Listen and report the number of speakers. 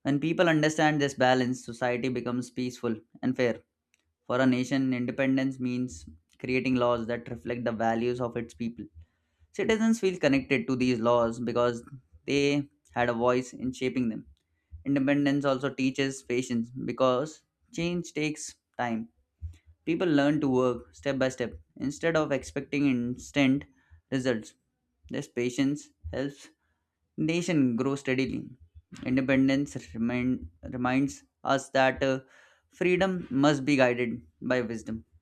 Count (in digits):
1